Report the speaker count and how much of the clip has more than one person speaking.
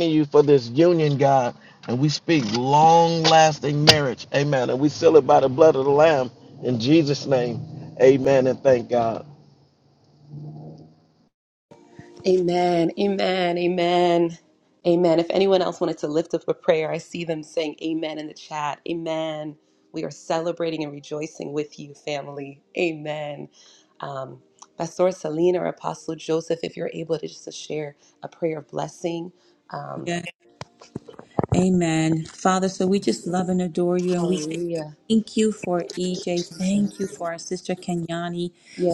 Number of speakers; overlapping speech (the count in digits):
3, about 1%